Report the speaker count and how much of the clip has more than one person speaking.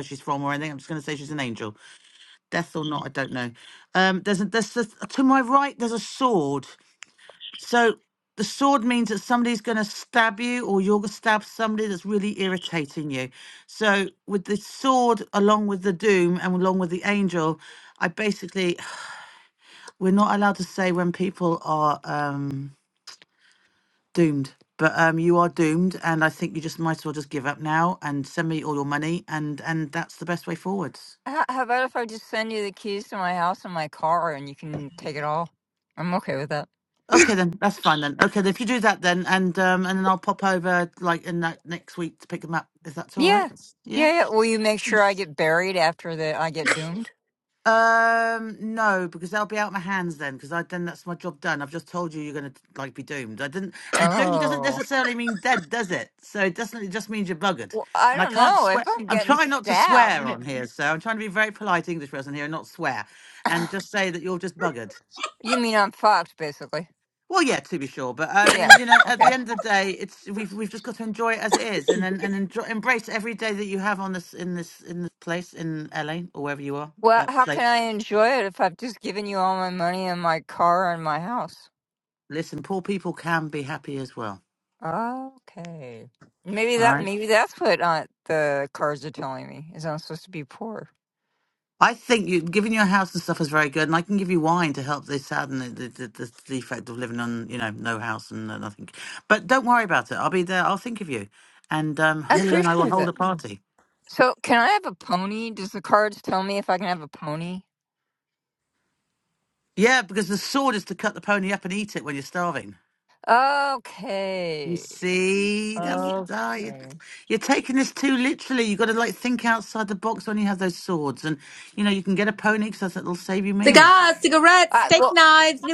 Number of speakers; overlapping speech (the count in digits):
3, about 6%